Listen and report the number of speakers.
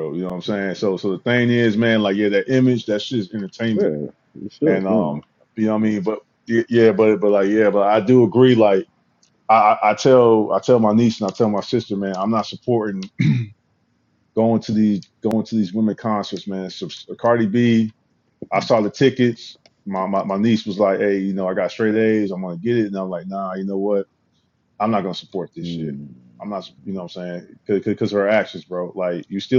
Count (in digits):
2